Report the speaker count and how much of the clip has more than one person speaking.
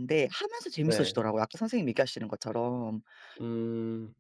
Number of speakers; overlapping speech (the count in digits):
2, about 7%